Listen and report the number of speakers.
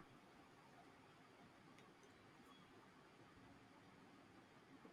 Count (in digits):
0